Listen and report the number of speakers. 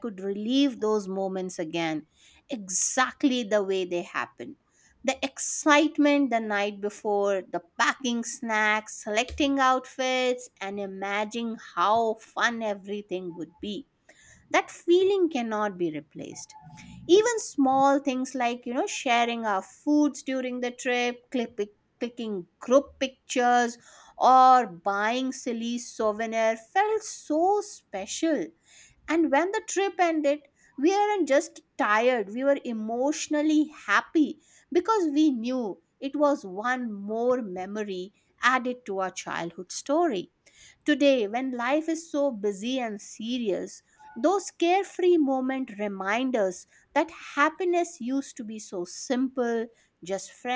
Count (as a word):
one